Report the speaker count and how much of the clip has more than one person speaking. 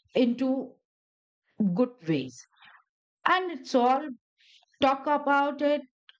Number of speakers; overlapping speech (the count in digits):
1, no overlap